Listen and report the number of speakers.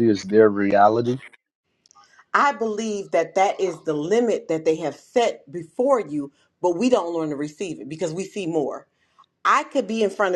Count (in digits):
2